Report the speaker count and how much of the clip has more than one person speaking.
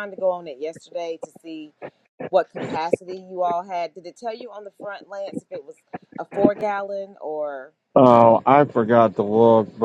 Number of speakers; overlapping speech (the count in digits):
2, no overlap